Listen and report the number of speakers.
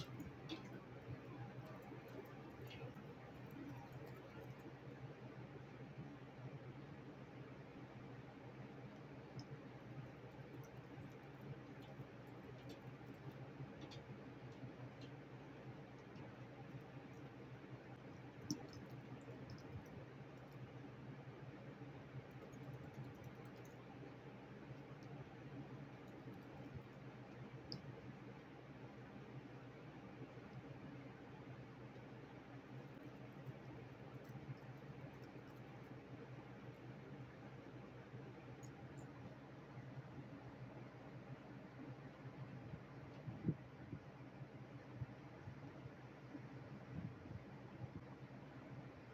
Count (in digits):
0